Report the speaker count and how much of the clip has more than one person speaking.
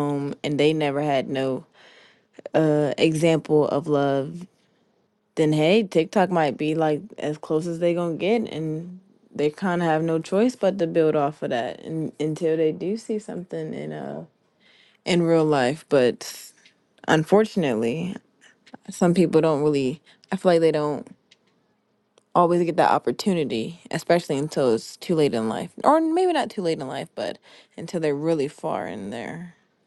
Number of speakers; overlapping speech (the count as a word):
one, no overlap